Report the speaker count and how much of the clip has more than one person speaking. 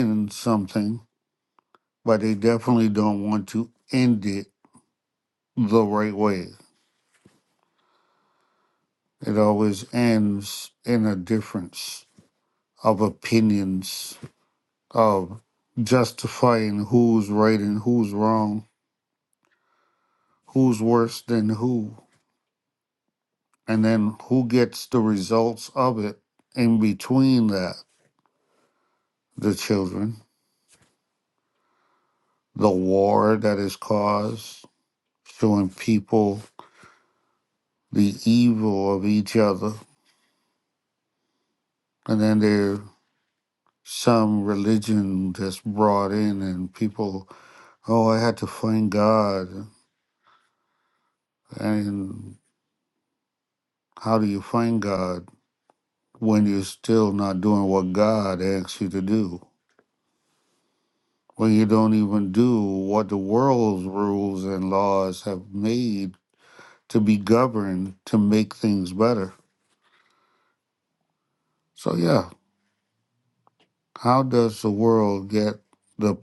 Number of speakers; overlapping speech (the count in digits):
1, no overlap